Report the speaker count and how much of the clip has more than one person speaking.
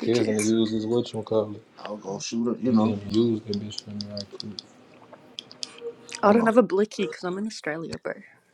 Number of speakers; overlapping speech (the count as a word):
three, about 13%